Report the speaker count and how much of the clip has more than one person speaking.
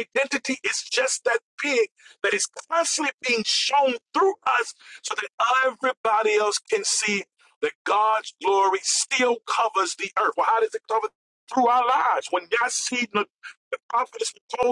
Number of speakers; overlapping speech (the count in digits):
1, no overlap